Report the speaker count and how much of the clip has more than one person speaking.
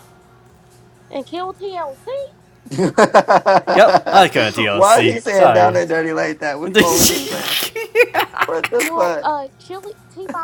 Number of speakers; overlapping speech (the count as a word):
three, about 15%